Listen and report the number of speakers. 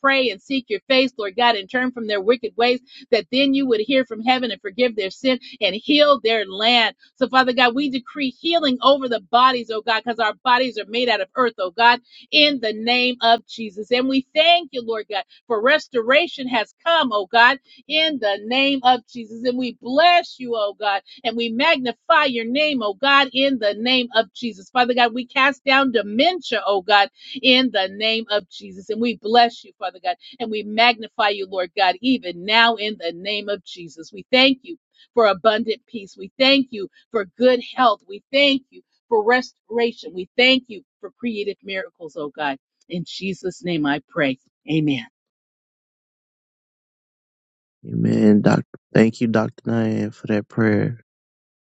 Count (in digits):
2